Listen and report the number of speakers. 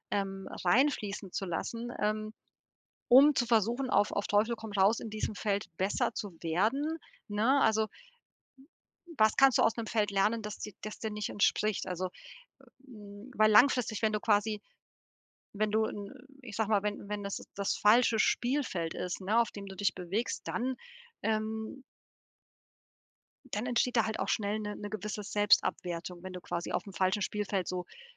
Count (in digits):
1